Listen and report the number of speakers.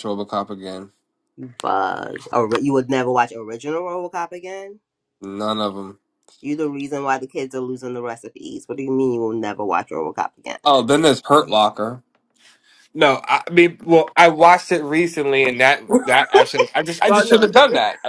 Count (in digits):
2